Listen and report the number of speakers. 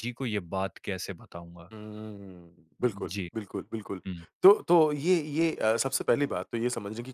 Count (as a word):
two